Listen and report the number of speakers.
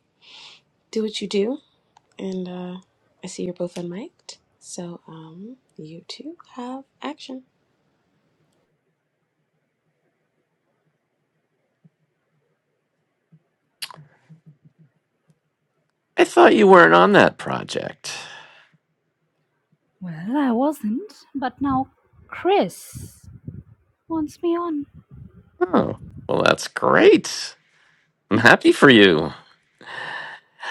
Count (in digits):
3